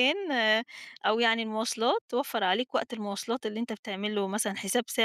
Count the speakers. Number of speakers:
1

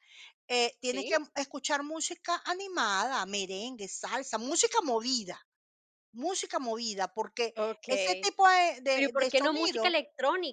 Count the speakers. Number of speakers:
2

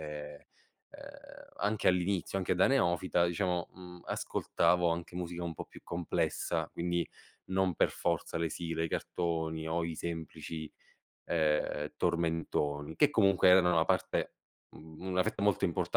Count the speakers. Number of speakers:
1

